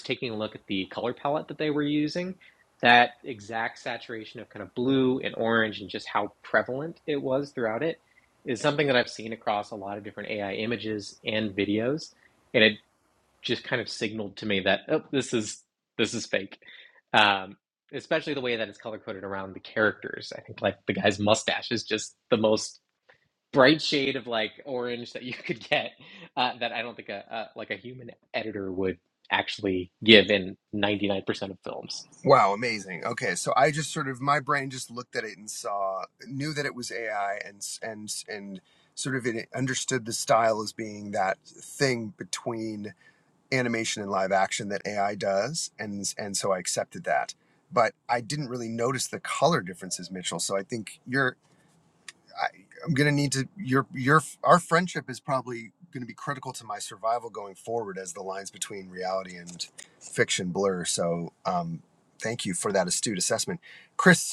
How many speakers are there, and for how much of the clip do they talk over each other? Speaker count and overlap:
2, no overlap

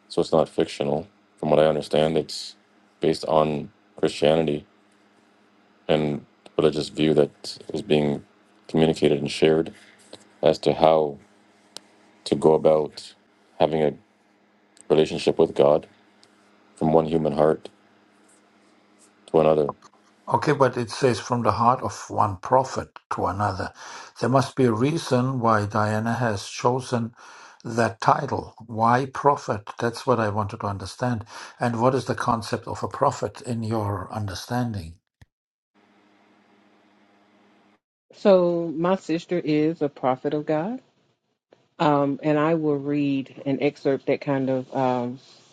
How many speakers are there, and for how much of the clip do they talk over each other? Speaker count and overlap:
3, no overlap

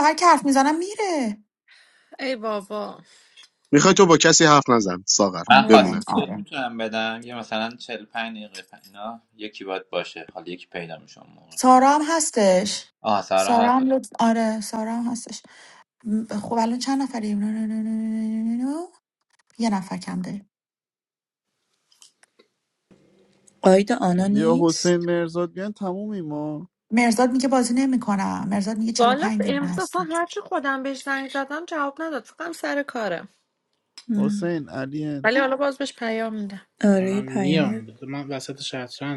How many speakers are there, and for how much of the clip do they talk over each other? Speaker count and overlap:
7, about 10%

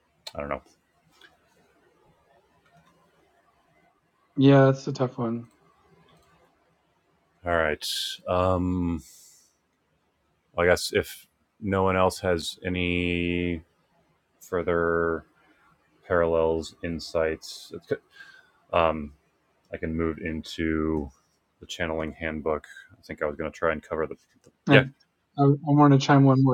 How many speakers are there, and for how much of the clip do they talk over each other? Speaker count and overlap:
2, under 1%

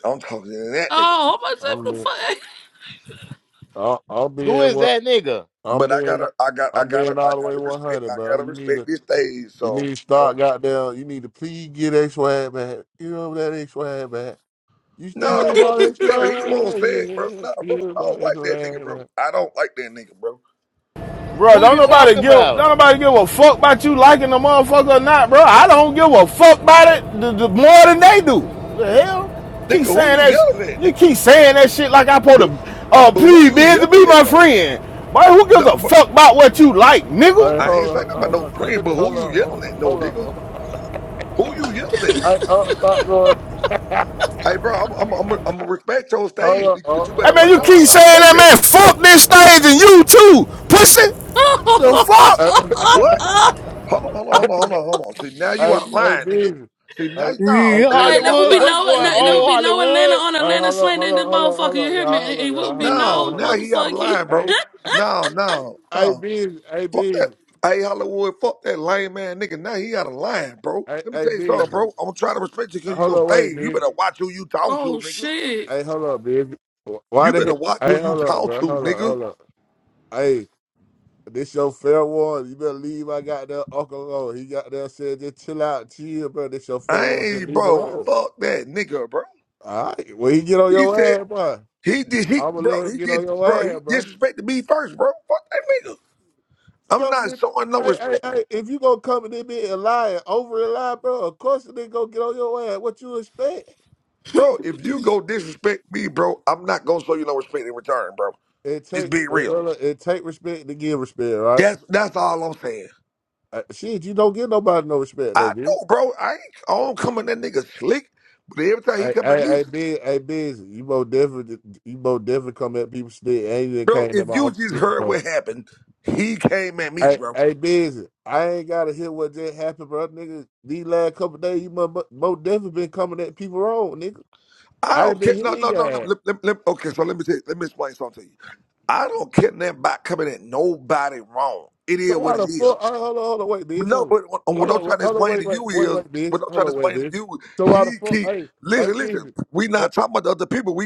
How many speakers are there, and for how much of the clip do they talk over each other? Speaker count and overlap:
5, about 29%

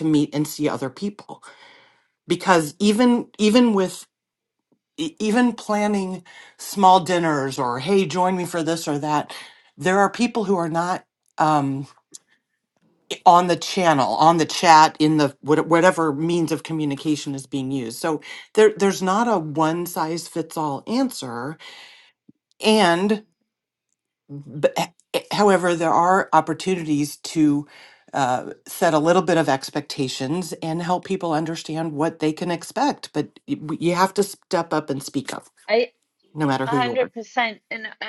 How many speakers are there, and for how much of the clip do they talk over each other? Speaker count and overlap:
2, about 1%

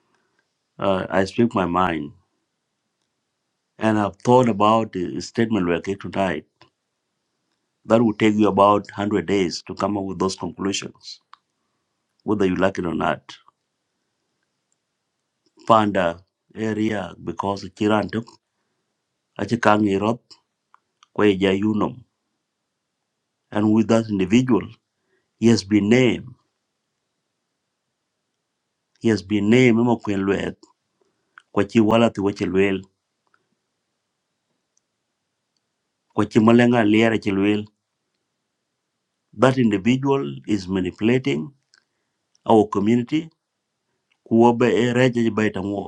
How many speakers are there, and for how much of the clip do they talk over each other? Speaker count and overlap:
1, no overlap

